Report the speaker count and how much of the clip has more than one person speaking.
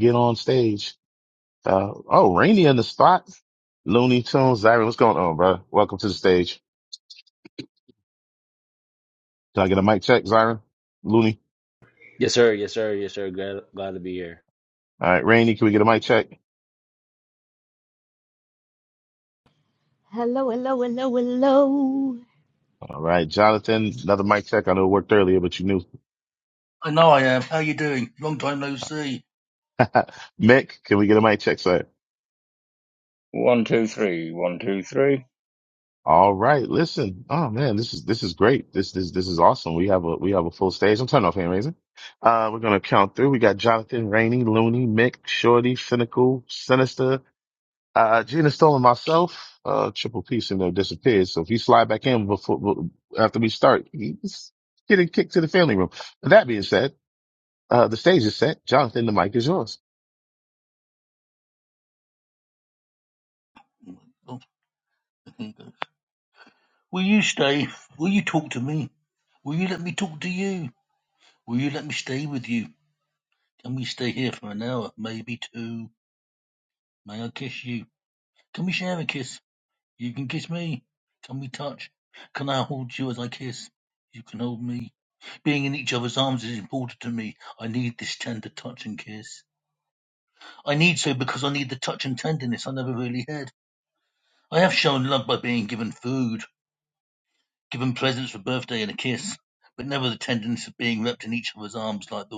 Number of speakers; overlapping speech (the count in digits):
5, no overlap